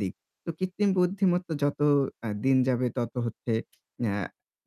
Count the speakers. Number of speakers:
1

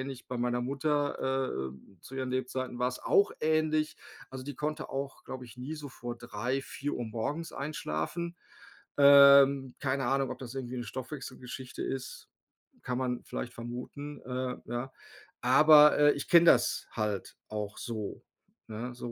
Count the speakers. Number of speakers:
1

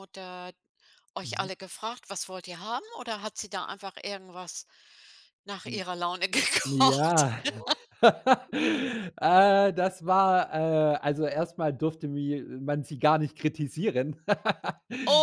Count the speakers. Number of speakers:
2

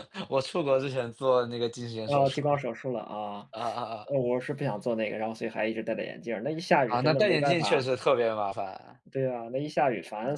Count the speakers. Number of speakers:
2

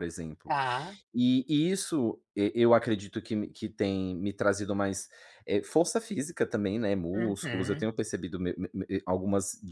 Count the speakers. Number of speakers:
2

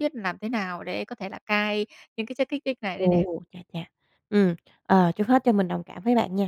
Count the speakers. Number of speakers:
2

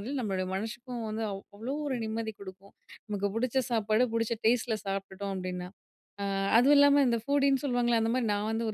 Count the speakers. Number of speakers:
1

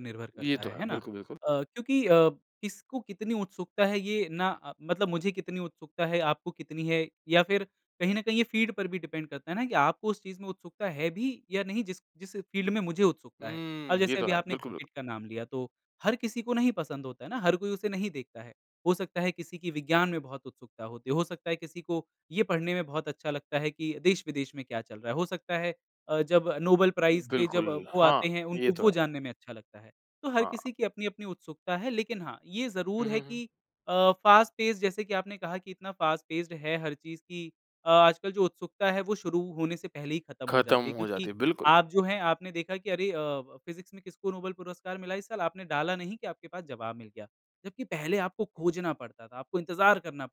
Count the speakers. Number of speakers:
2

